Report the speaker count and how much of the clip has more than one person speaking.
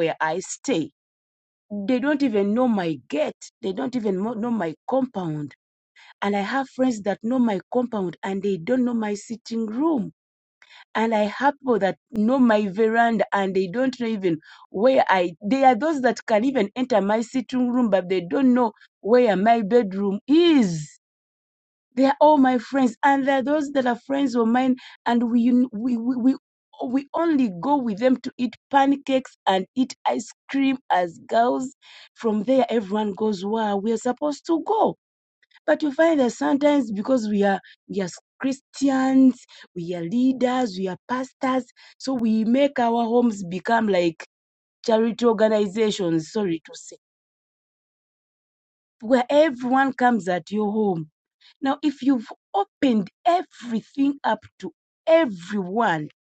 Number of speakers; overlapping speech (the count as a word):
one, no overlap